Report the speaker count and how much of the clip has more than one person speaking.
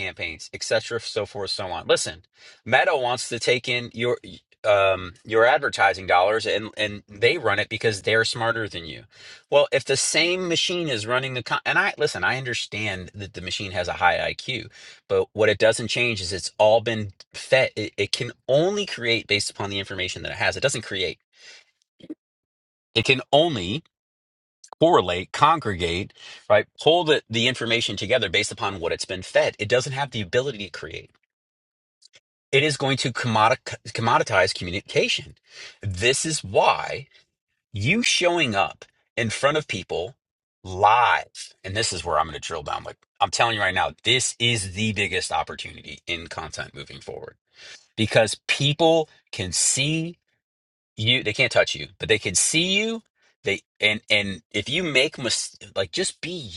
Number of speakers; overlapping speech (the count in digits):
1, no overlap